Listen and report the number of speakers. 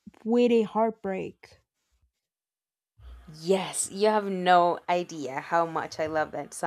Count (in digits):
2